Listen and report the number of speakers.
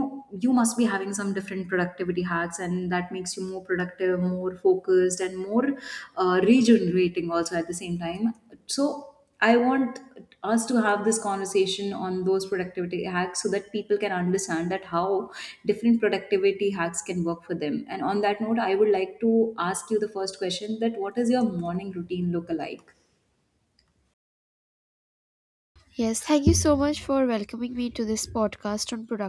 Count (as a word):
two